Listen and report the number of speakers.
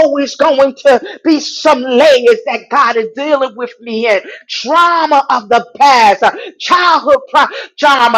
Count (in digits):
1